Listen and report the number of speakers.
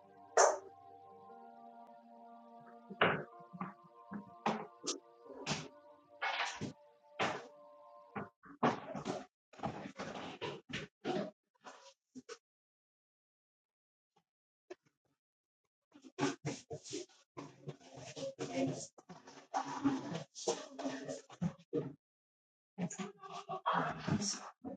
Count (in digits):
0